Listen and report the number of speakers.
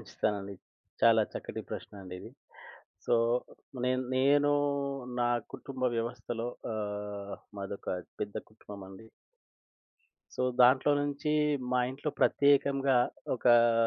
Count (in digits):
1